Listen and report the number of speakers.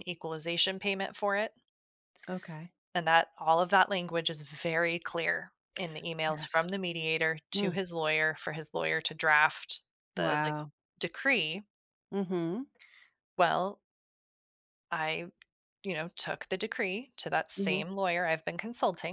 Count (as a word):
two